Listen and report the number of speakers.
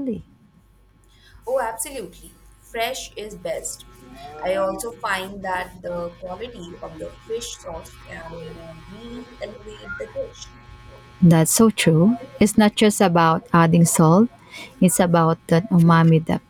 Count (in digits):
2